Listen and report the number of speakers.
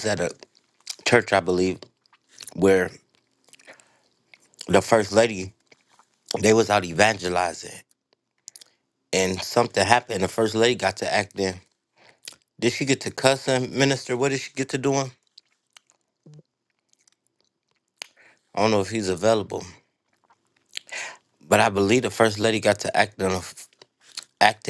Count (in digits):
1